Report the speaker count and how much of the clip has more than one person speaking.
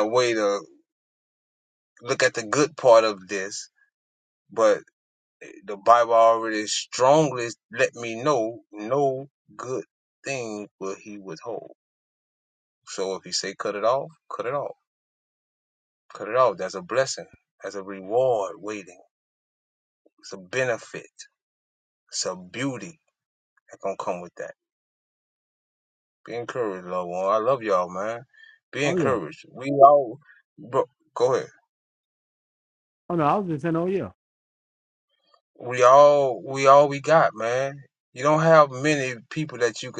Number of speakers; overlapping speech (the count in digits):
2, about 1%